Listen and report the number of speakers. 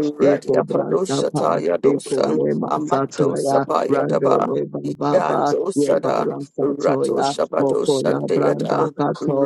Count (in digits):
2